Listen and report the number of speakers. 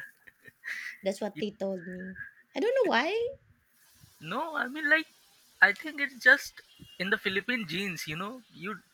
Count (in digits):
2